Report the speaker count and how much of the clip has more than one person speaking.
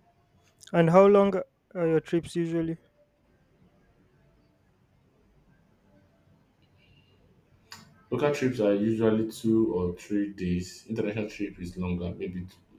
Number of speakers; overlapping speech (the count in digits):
2, no overlap